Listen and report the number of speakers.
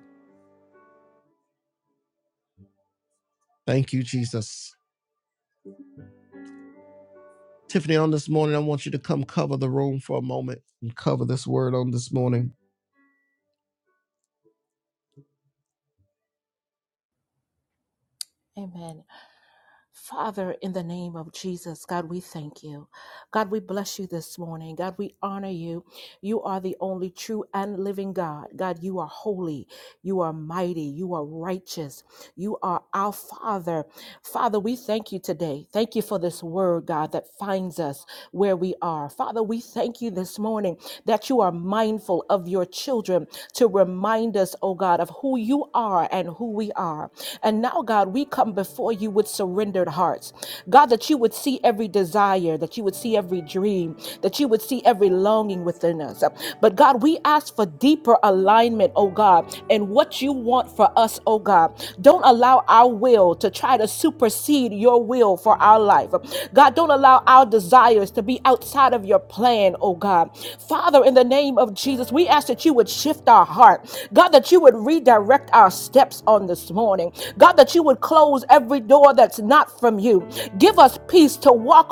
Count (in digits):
2